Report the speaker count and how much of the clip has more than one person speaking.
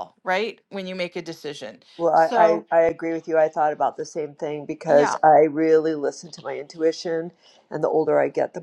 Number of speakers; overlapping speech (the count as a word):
two, about 7%